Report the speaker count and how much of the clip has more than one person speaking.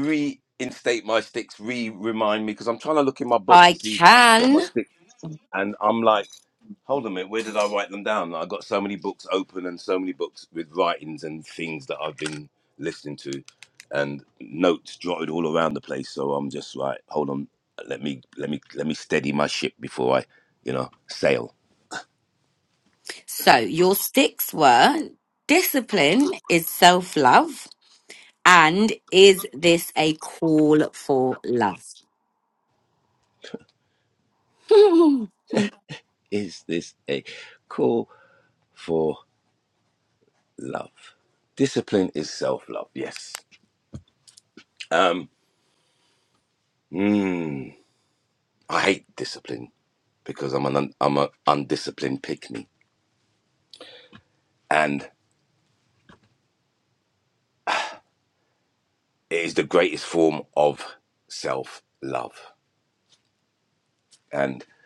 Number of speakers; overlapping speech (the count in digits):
2, about 2%